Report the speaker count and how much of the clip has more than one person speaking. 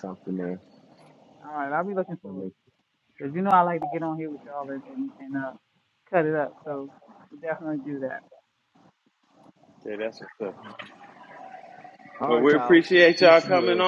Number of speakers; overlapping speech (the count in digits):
3, about 10%